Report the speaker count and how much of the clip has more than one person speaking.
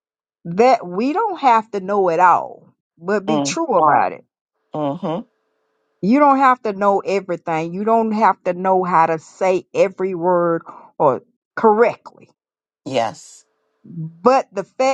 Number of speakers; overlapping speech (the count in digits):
2, about 2%